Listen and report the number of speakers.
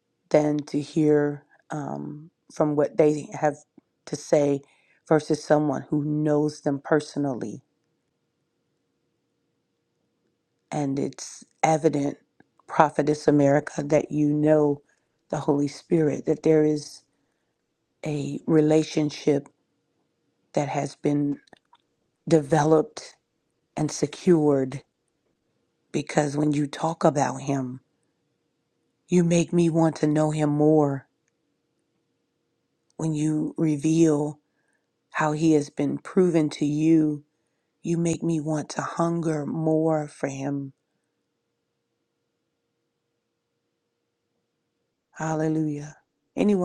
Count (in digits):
1